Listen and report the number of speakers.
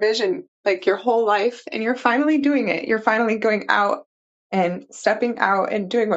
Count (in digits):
1